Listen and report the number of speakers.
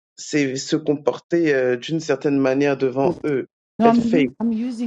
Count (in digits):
2